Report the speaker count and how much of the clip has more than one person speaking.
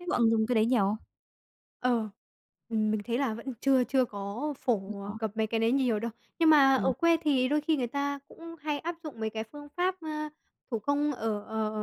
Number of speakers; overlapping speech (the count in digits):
2, about 5%